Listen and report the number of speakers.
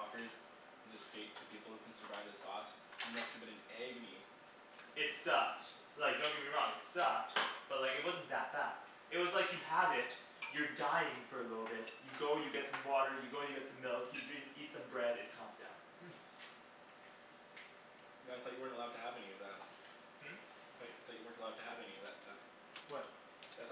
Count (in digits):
2